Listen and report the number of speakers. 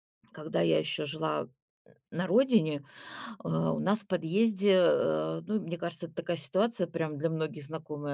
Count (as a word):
one